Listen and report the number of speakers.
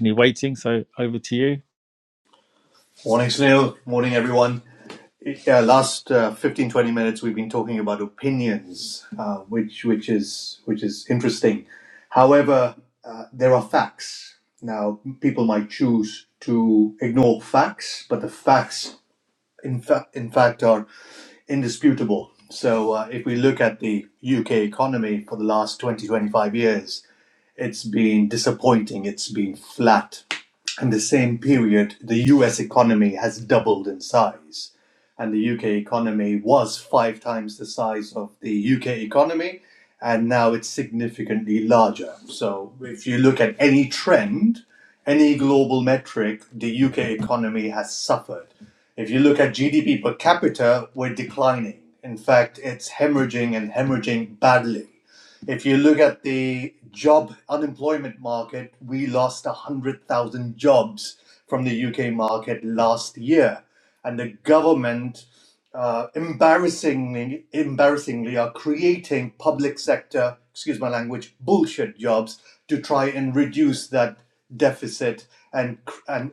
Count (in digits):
2